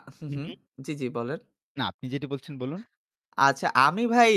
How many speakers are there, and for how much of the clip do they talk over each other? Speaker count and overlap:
two, about 6%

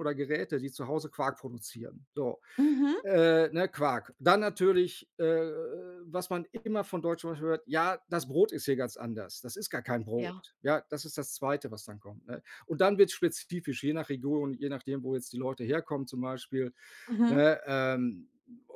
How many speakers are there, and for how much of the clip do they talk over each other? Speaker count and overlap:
two, about 2%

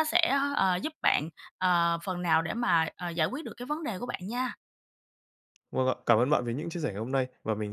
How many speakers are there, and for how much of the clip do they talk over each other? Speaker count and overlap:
two, no overlap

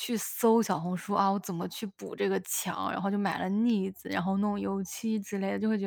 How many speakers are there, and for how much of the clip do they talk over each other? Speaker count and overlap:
one, no overlap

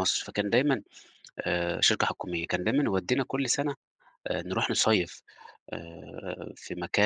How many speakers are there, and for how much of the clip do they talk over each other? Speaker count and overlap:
one, no overlap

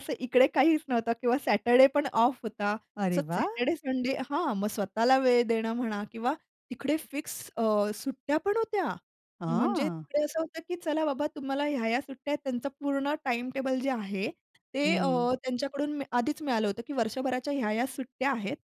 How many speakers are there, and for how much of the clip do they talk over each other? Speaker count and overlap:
two, about 7%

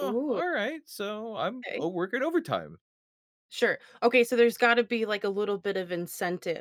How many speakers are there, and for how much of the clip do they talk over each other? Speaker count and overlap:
two, about 10%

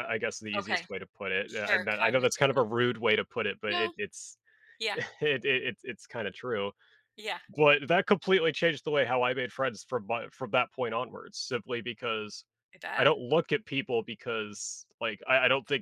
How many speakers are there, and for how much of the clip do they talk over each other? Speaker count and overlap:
two, about 12%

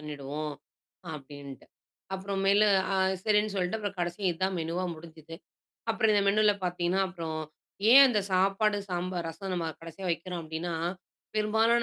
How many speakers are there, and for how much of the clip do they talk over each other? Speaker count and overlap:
one, no overlap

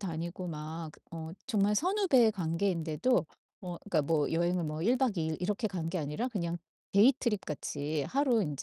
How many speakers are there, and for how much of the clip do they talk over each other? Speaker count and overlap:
one, no overlap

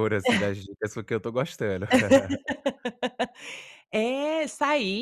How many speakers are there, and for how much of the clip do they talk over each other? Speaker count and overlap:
two, no overlap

